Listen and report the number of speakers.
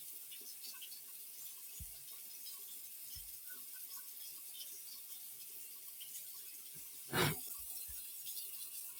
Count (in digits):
0